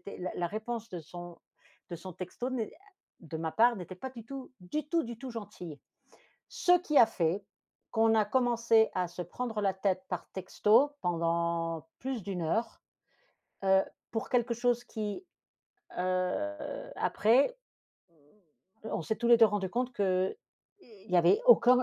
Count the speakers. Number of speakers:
one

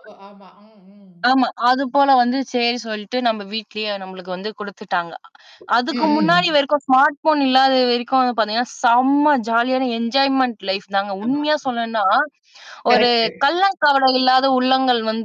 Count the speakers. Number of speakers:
two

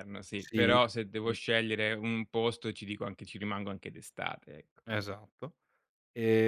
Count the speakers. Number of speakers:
two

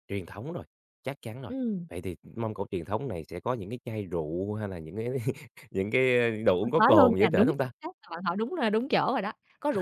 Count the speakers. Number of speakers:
two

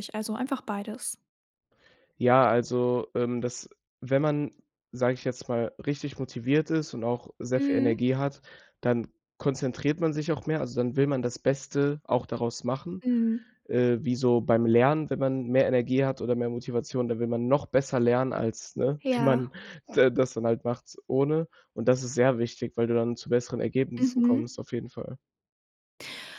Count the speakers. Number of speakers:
two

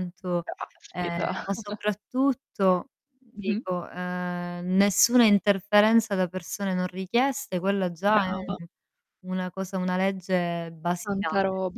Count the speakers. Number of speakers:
two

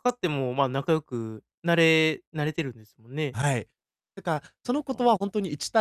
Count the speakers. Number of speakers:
two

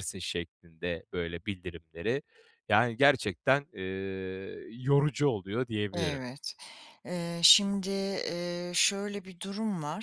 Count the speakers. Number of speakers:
two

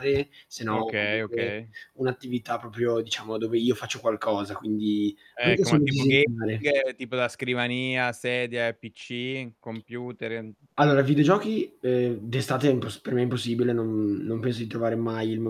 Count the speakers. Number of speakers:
two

